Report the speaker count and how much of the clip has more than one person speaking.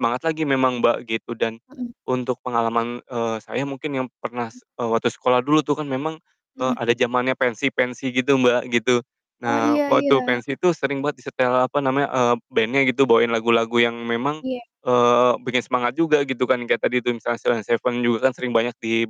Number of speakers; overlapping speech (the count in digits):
2, about 6%